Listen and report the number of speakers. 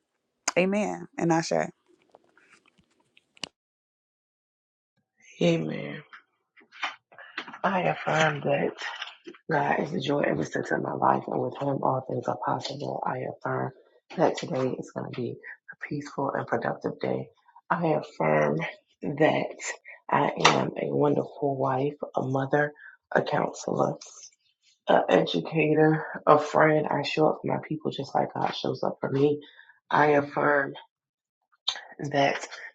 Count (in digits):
2